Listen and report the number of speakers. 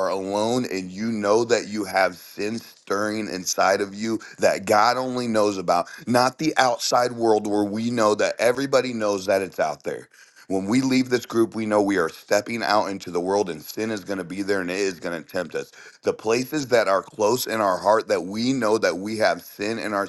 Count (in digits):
1